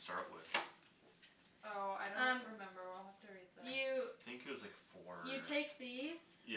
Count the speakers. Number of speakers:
three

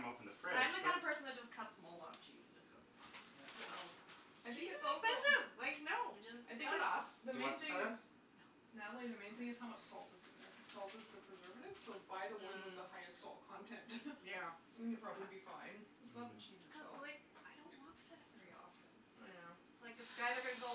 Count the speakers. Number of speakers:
three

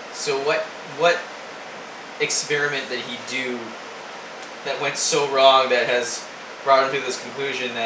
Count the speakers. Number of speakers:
one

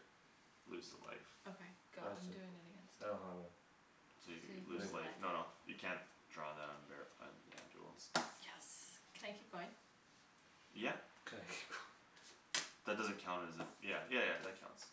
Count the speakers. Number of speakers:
three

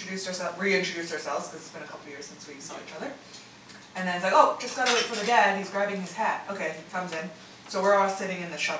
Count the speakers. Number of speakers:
one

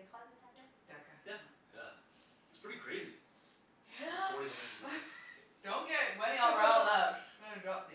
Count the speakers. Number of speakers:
three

